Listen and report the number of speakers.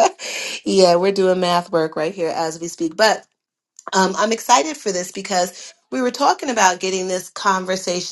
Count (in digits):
1